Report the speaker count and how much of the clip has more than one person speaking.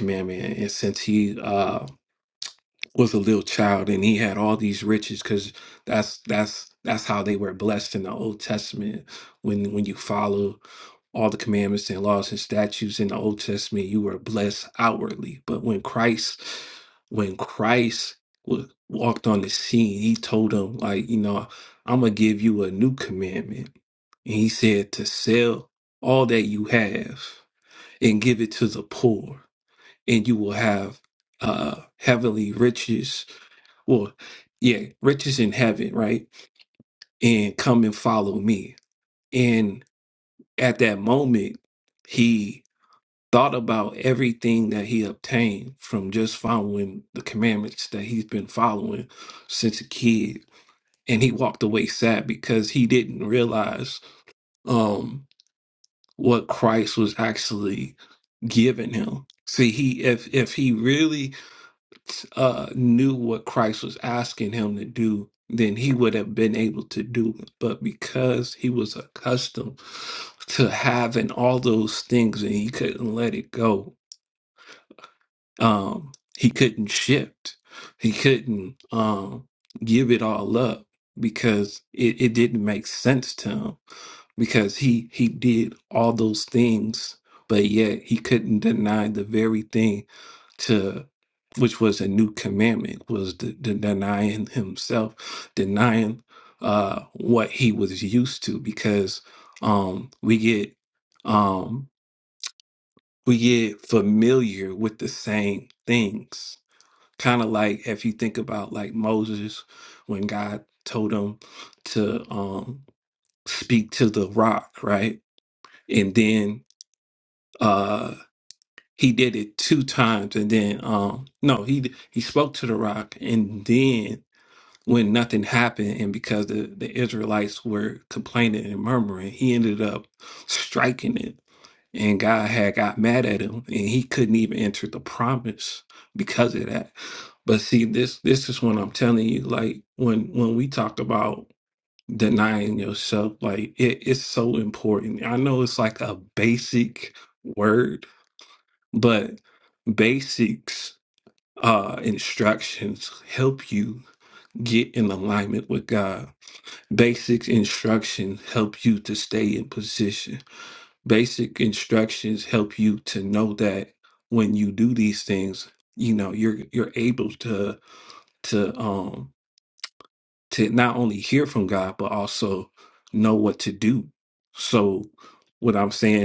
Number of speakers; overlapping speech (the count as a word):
one, no overlap